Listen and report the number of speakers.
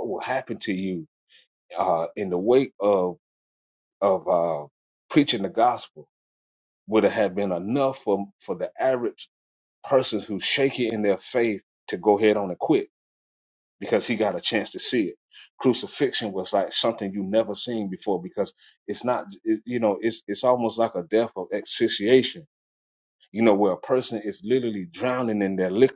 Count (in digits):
1